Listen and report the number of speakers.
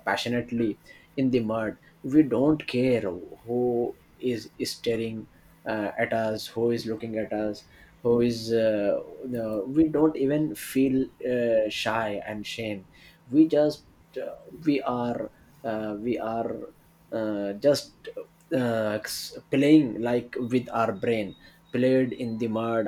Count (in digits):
1